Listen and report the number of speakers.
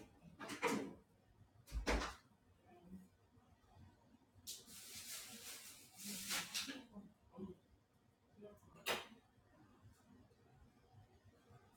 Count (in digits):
0